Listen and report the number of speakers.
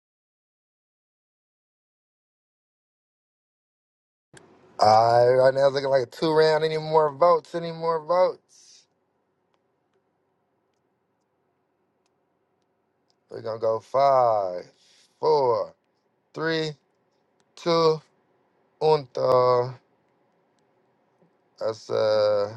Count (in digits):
1